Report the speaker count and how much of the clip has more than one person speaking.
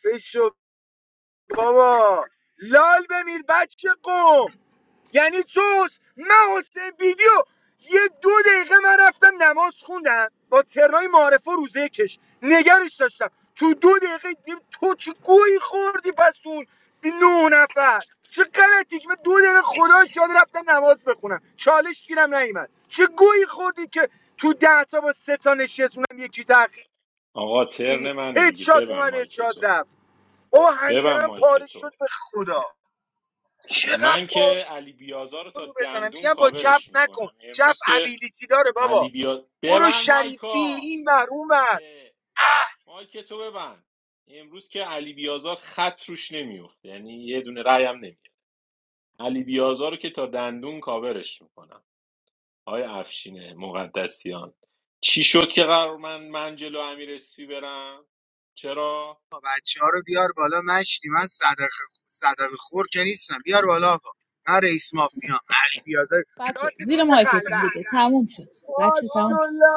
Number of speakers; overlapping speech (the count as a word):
three, about 13%